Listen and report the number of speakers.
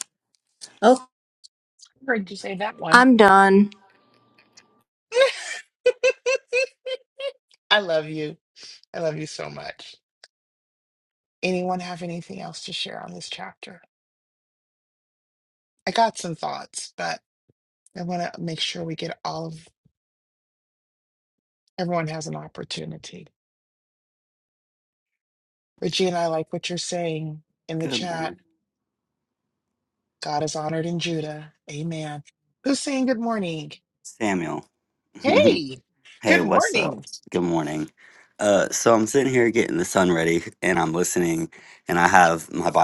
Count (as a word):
three